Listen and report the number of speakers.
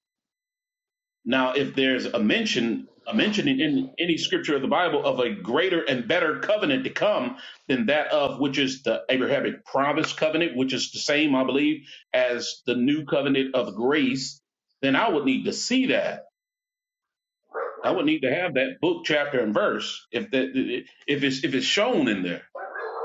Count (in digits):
1